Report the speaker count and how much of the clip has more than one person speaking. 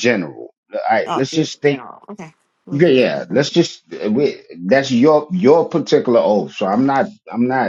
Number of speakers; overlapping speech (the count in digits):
2, about 11%